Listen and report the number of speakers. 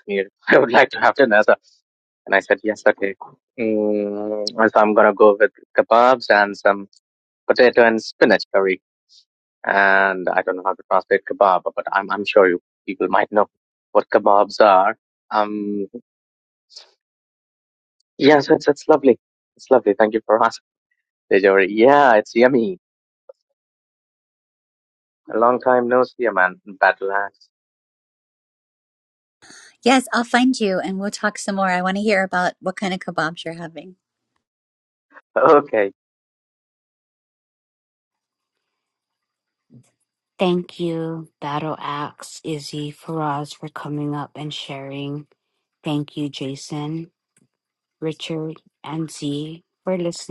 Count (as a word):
three